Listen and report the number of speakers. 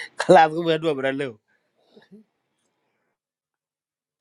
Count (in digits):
1